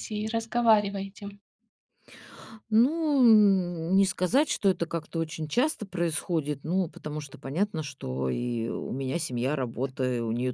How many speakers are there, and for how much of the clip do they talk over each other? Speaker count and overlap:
two, no overlap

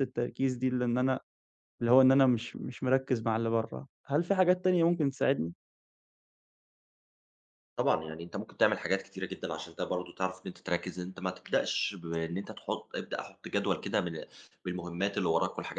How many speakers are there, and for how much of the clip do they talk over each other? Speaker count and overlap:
two, no overlap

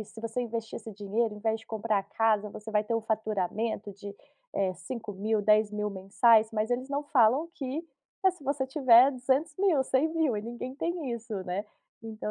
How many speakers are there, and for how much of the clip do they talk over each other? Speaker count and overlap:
one, no overlap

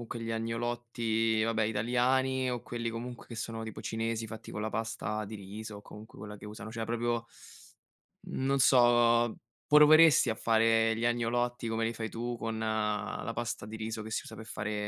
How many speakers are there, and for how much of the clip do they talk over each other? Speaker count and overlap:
one, no overlap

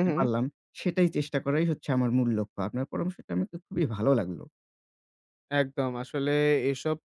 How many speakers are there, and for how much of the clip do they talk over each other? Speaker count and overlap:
two, about 4%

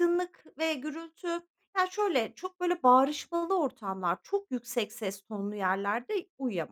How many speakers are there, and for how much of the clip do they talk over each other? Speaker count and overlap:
one, no overlap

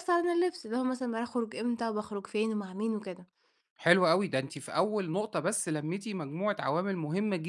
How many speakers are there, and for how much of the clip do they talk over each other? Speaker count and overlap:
two, no overlap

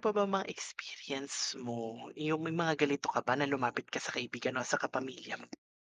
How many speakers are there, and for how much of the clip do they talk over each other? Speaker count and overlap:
one, no overlap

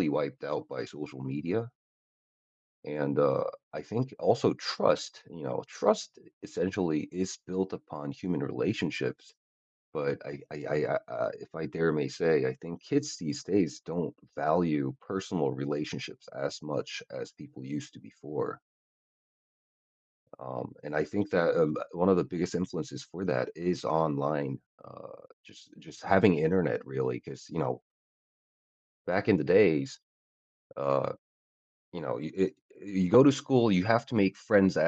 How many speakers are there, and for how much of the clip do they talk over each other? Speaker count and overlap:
one, no overlap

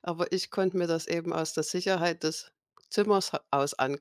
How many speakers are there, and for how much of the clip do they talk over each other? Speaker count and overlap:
one, no overlap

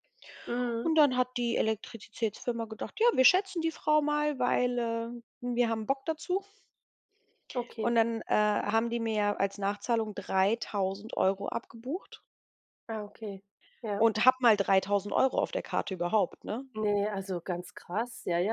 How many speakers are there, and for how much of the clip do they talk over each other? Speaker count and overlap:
two, about 1%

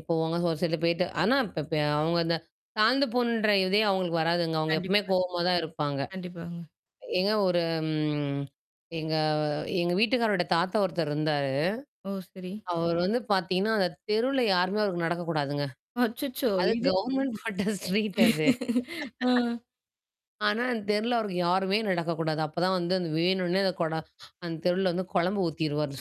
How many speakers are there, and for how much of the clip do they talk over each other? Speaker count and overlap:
two, about 2%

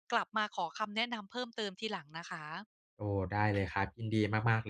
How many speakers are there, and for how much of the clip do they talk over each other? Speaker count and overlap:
two, no overlap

